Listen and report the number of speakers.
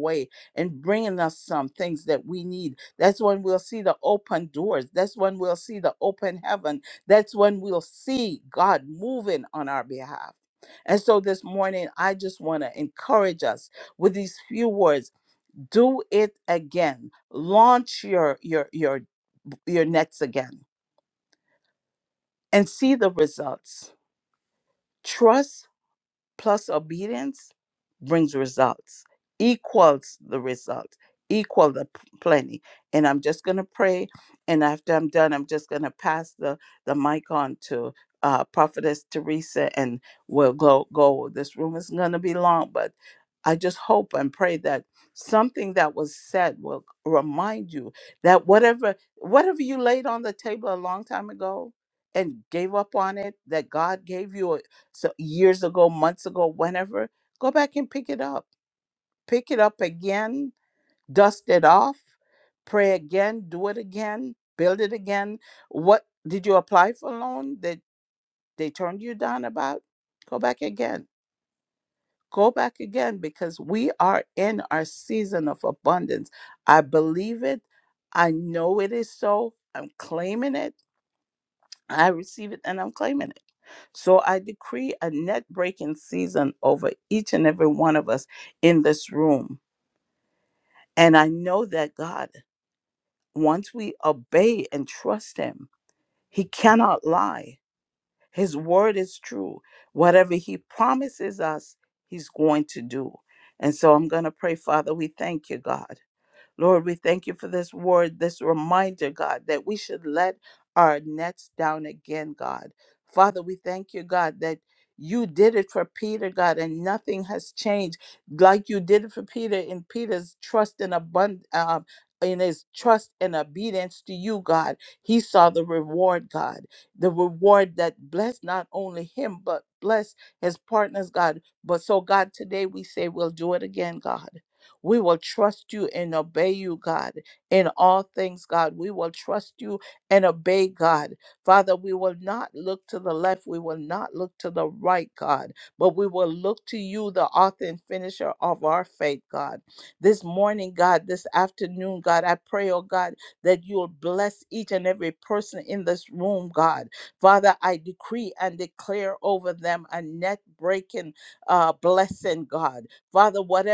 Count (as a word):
one